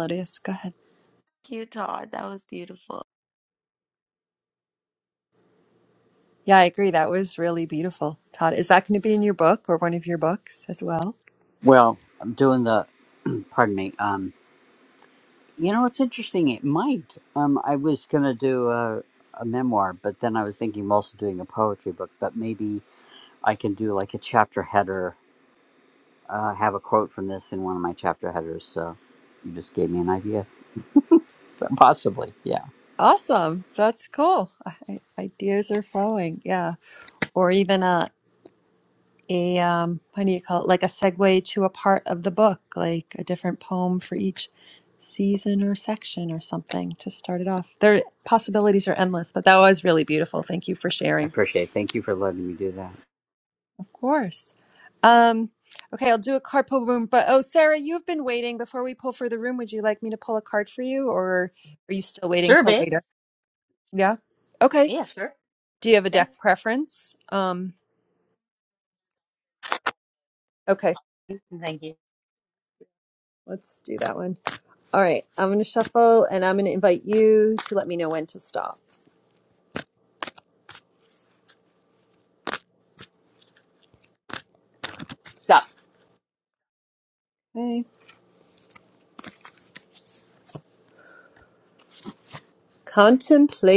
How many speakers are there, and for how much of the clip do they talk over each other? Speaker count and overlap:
4, about 1%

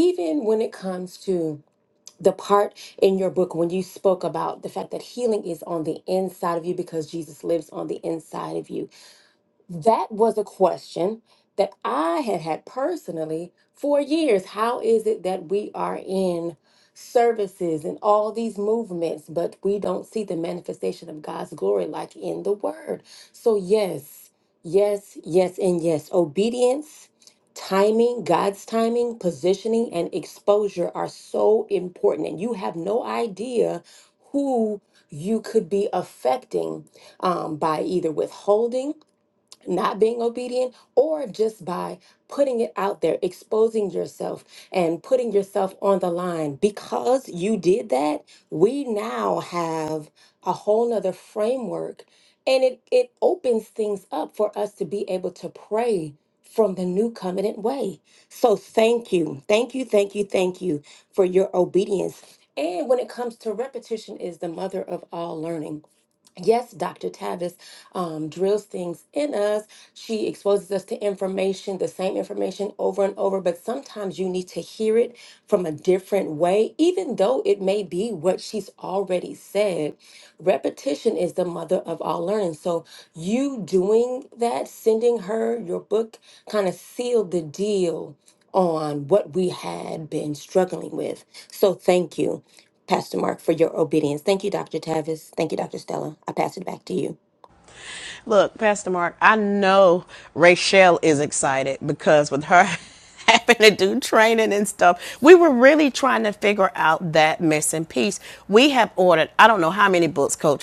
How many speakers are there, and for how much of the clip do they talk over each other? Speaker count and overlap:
2, no overlap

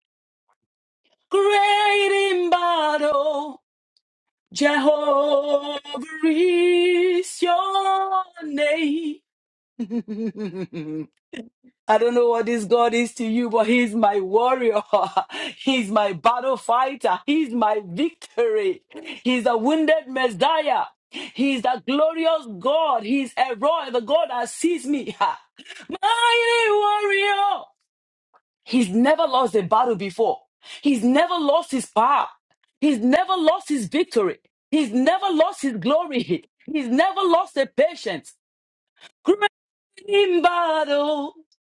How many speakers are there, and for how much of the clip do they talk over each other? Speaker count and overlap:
1, no overlap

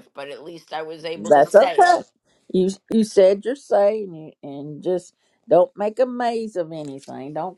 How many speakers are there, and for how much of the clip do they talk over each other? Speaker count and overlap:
2, about 11%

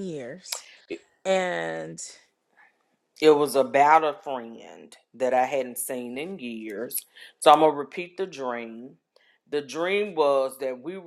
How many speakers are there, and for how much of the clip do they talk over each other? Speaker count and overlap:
2, no overlap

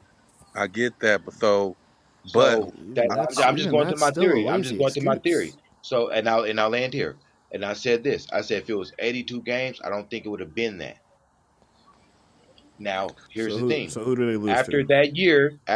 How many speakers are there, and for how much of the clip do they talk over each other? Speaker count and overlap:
3, about 23%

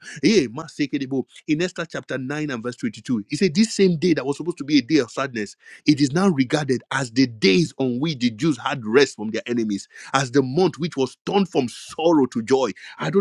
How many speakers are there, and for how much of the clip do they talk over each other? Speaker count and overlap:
1, no overlap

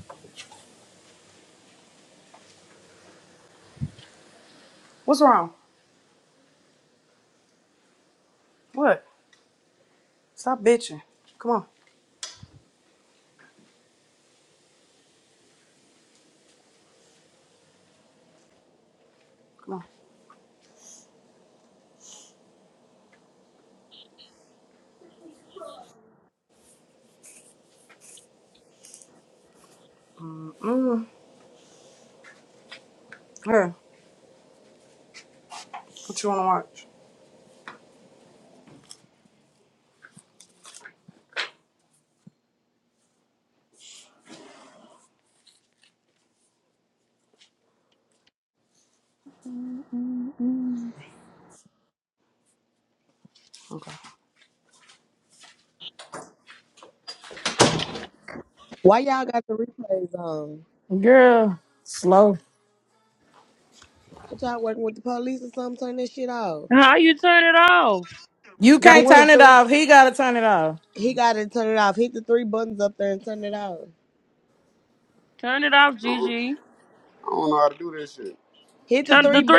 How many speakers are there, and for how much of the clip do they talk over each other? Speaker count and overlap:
5, about 2%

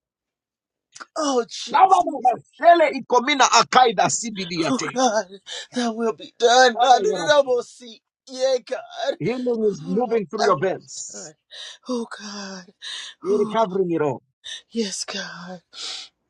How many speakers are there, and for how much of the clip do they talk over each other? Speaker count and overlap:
2, about 13%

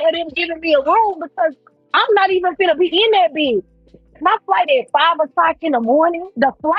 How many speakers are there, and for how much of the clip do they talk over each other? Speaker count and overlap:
1, no overlap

